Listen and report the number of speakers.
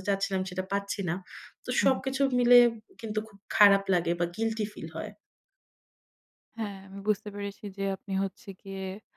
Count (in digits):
2